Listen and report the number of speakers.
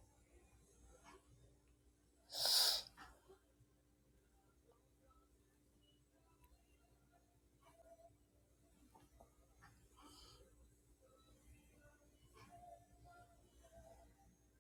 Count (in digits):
0